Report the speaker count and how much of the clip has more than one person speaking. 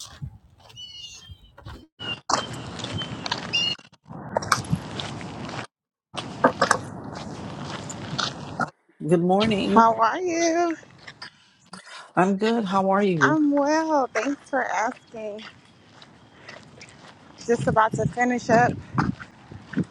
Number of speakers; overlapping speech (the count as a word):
two, about 2%